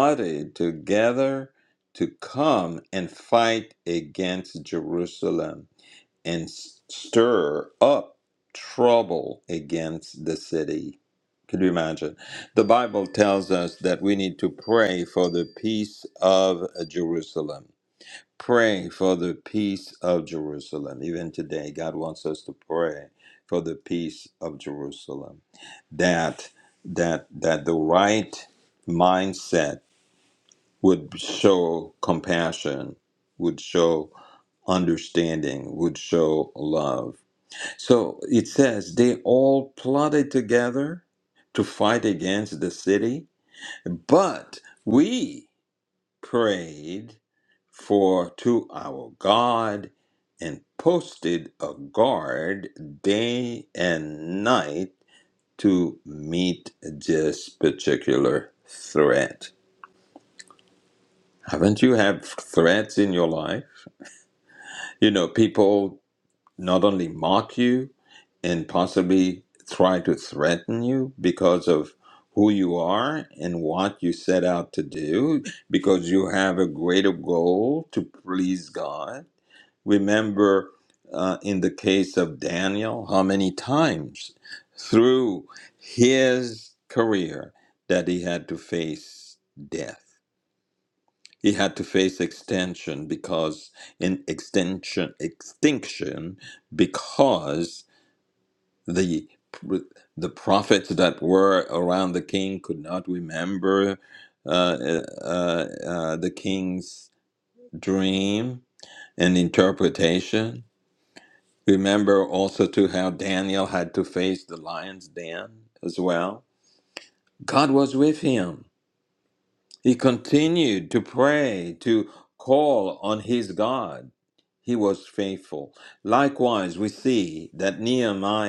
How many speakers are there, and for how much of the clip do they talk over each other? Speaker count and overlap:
one, no overlap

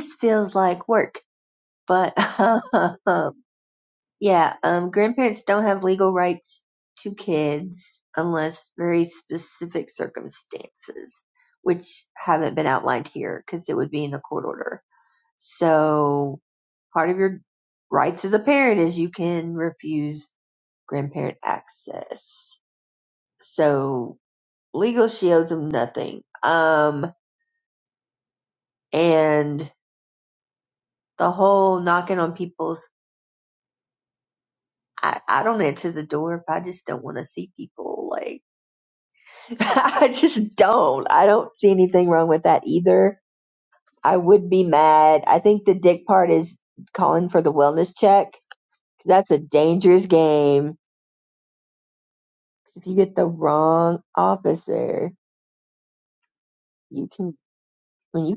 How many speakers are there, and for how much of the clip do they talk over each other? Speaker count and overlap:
one, no overlap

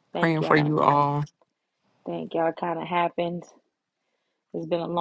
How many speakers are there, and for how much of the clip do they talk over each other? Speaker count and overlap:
two, about 10%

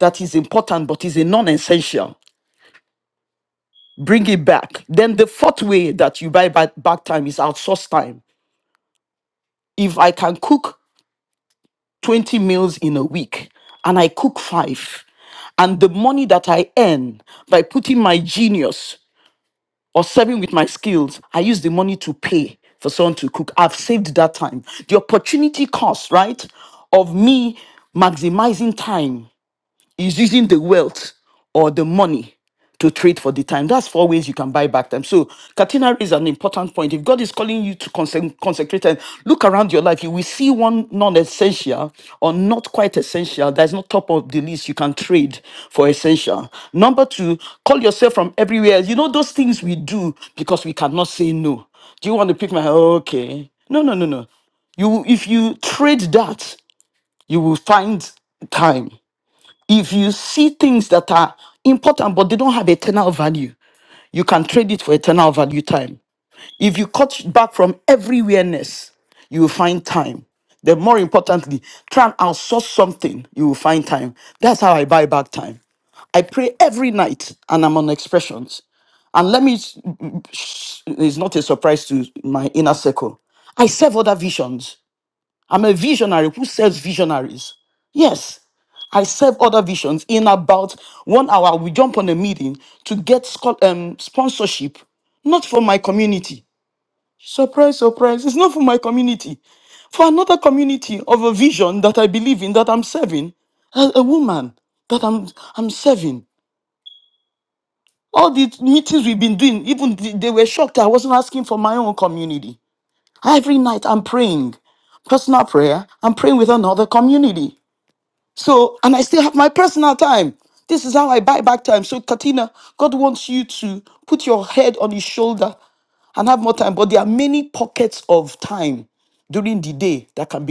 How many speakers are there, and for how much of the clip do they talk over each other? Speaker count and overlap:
one, no overlap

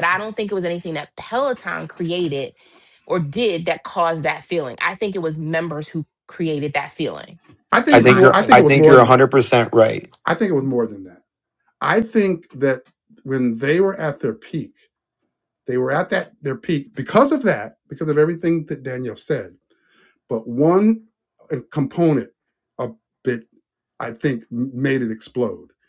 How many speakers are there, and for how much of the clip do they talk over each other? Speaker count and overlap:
three, about 5%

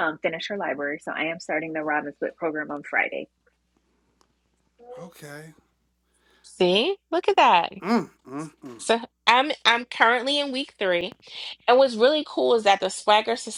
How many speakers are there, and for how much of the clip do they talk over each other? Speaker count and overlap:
three, no overlap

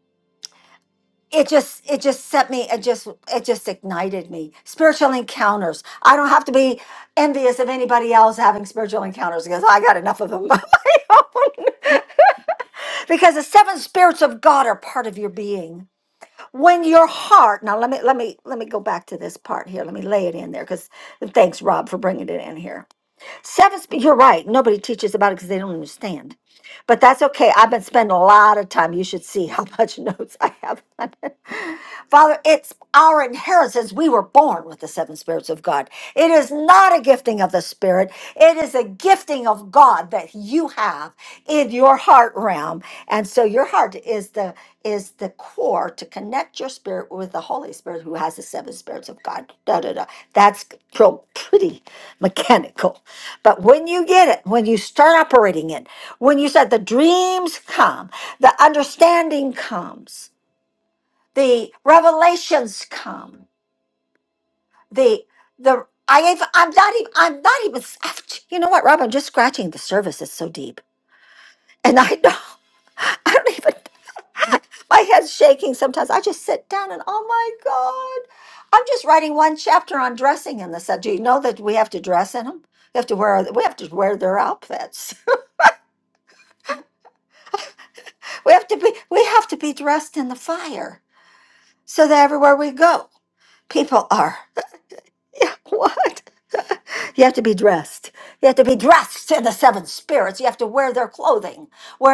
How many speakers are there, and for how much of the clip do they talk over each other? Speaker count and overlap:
one, no overlap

